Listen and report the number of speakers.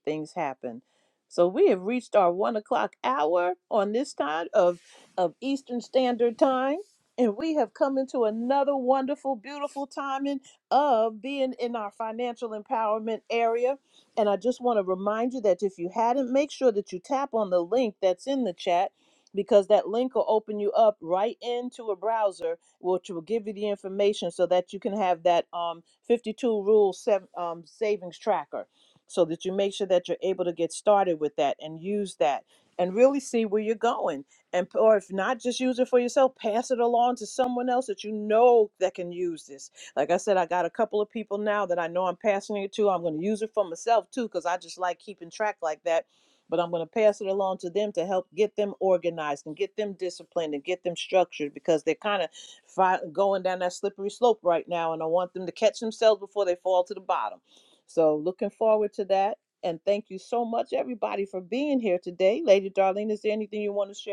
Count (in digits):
1